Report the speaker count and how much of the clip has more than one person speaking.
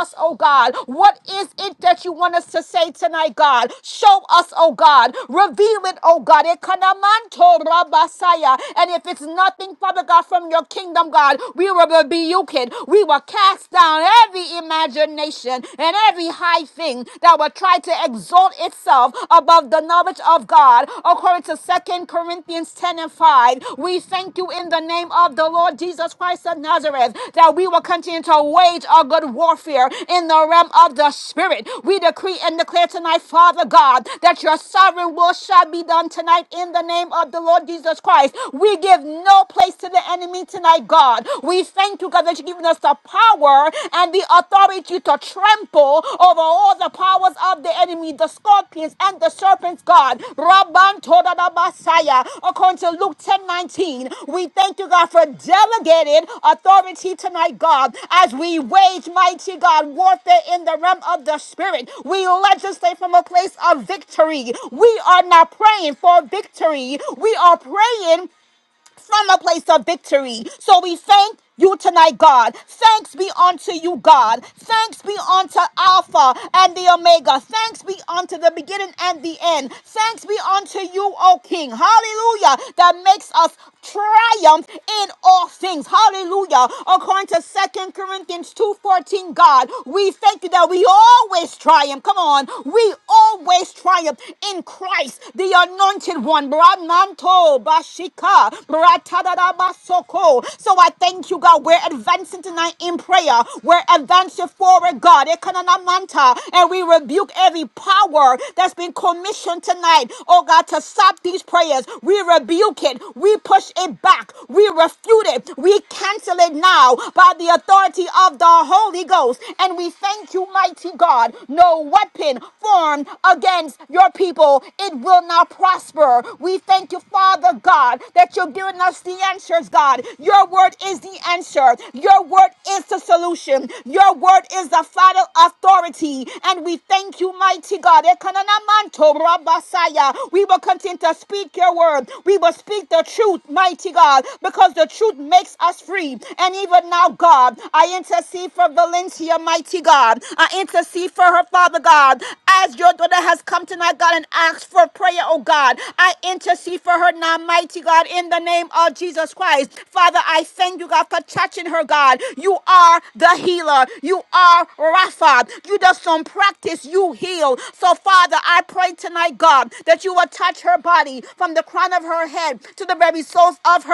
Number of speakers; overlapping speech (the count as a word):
one, no overlap